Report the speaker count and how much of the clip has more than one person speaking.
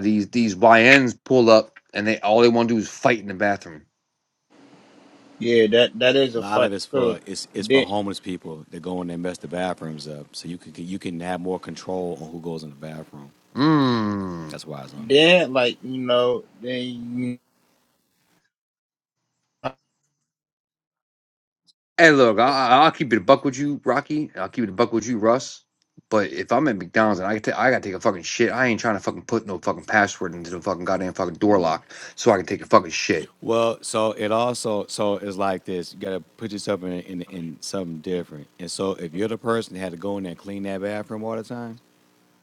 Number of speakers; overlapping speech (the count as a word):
three, about 2%